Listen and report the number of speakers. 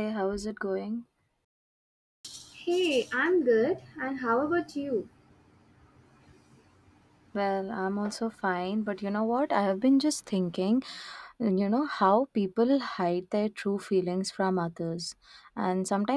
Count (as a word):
two